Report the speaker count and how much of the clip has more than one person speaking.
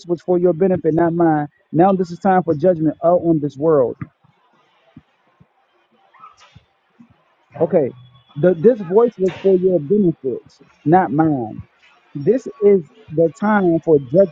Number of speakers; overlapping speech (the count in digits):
1, no overlap